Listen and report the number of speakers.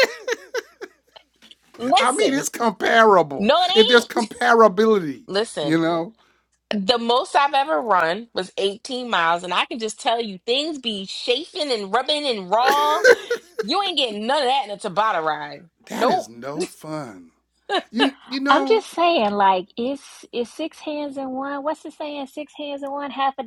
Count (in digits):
3